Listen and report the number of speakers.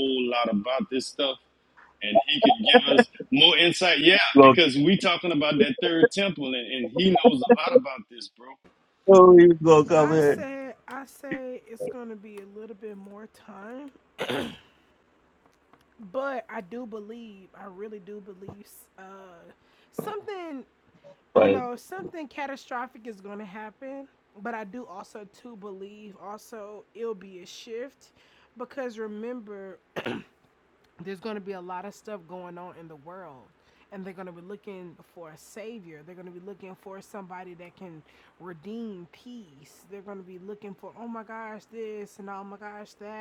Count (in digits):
3